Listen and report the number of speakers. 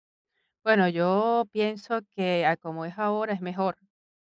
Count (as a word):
one